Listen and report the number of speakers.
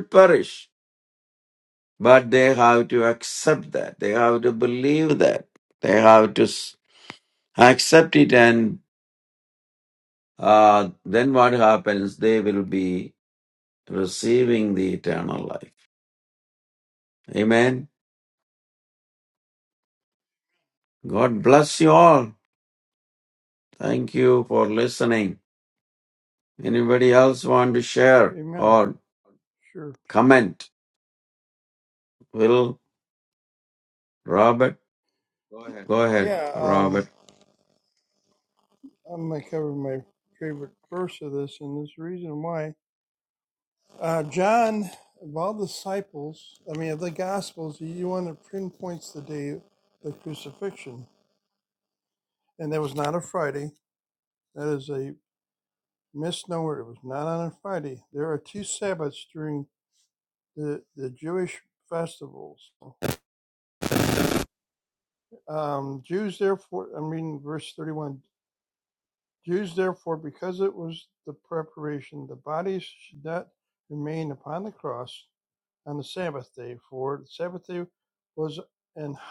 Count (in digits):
2